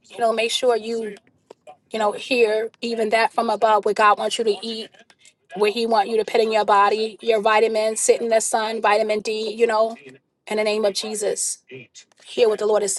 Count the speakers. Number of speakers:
one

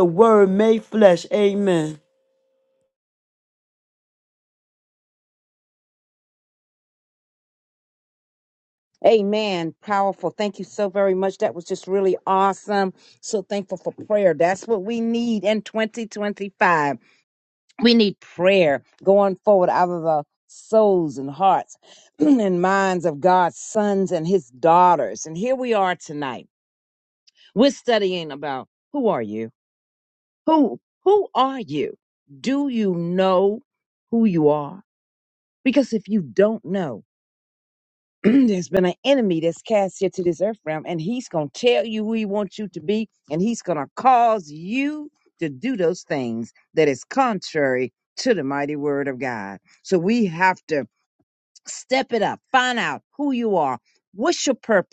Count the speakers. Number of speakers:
two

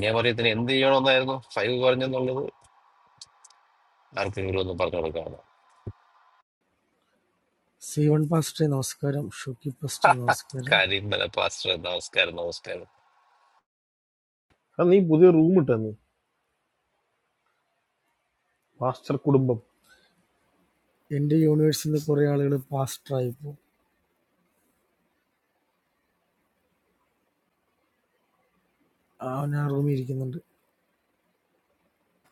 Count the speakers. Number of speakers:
three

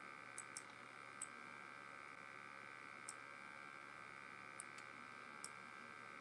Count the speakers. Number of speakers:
zero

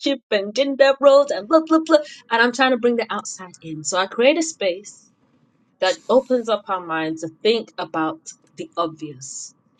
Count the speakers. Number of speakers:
one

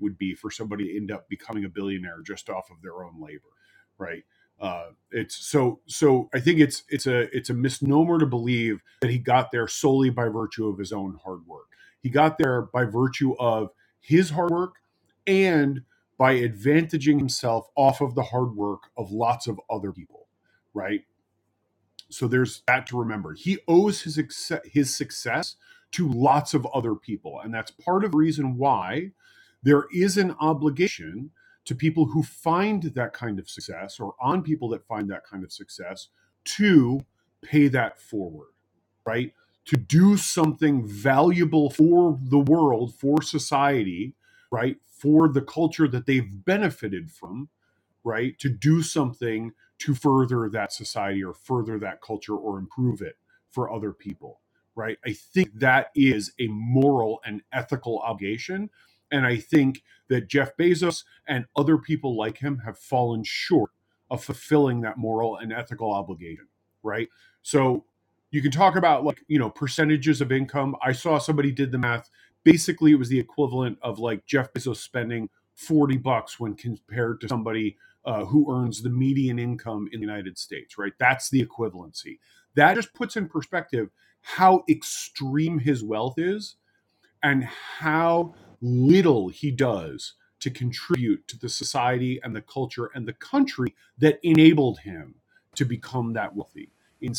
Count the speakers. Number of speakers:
one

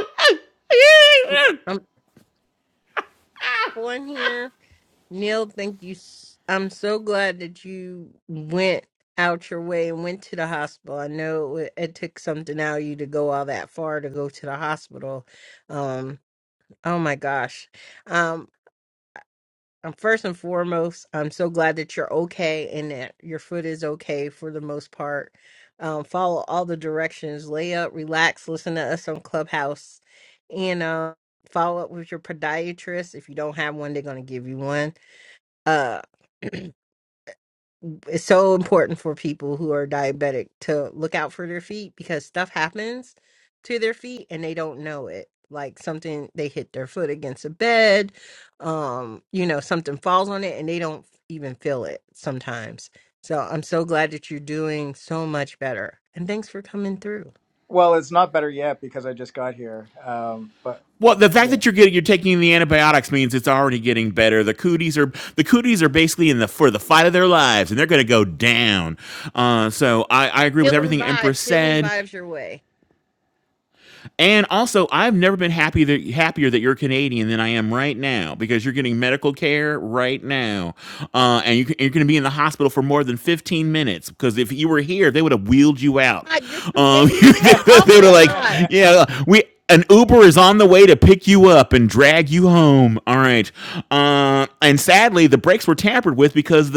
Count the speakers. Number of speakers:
three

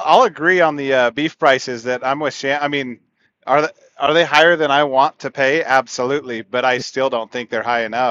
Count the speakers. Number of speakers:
one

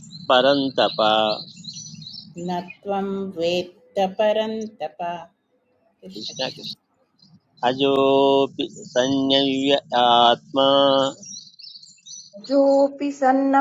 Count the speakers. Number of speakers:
three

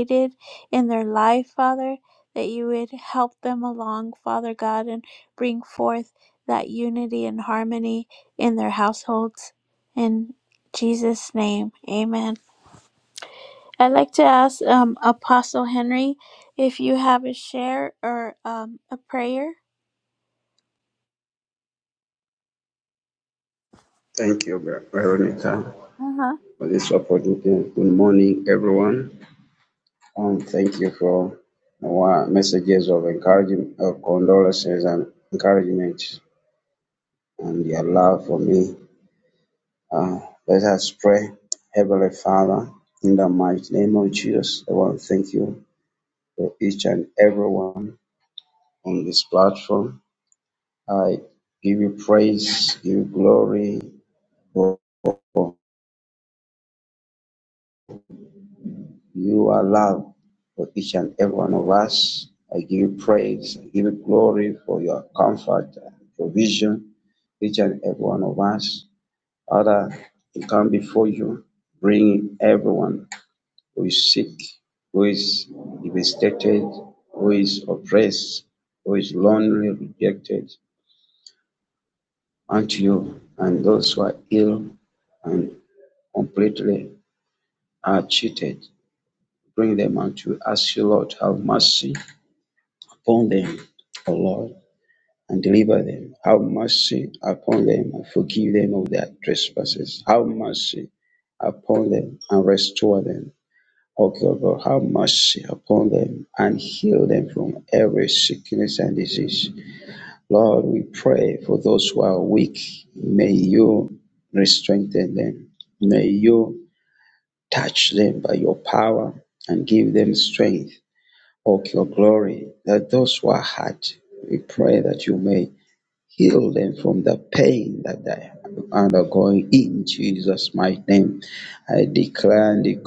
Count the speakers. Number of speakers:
two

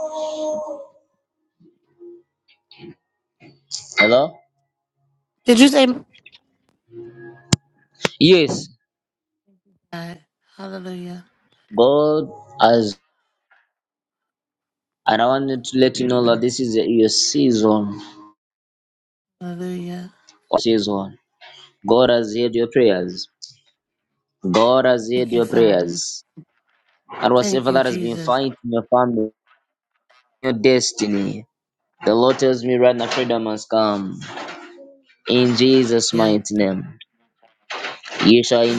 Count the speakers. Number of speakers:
two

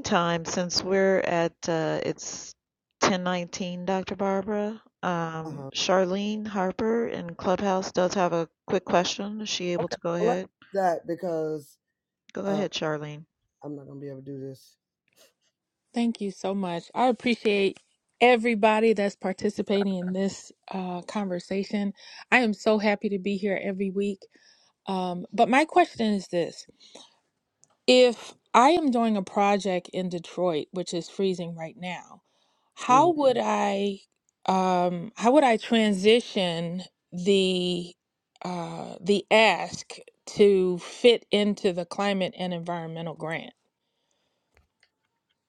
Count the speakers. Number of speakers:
three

